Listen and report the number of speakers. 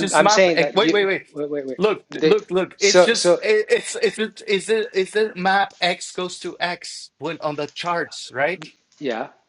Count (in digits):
2